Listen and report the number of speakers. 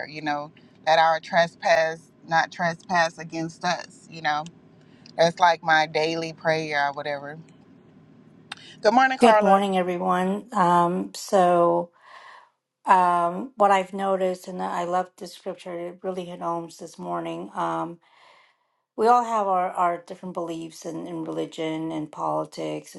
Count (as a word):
two